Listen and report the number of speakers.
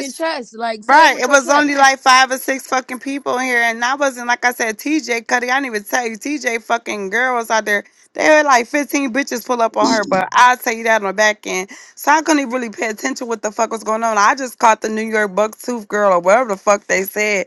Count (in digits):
2